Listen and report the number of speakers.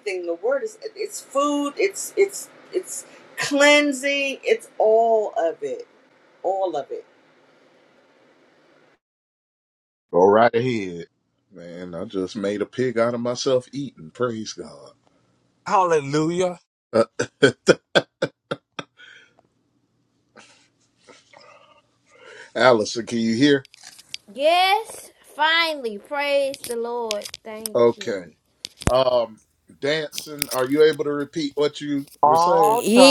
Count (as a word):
four